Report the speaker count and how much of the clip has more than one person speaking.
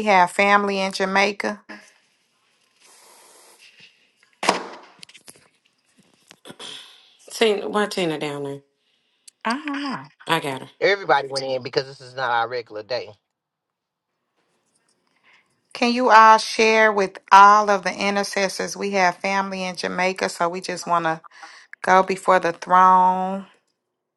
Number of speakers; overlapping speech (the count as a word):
three, no overlap